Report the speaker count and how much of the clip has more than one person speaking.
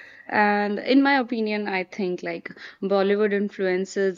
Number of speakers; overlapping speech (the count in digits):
1, no overlap